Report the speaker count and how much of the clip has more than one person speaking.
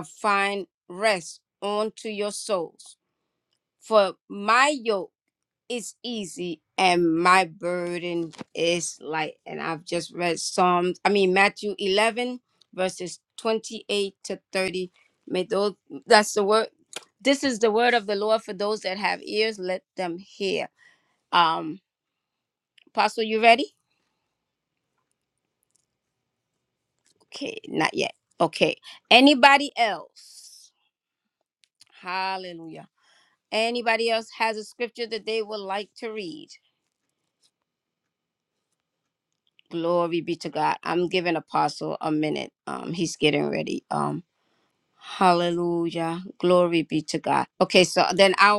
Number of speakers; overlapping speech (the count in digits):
1, no overlap